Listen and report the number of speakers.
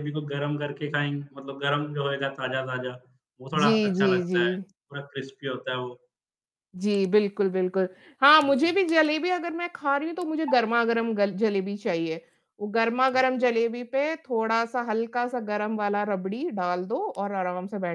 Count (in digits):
2